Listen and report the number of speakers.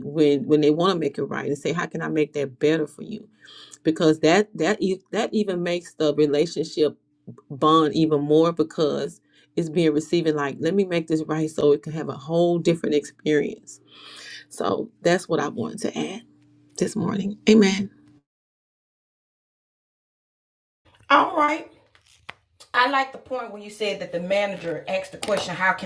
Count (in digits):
2